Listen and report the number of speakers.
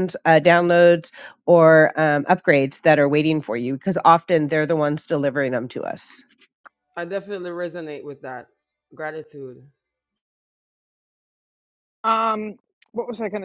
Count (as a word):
three